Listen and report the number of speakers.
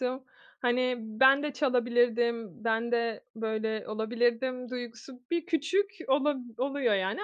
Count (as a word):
one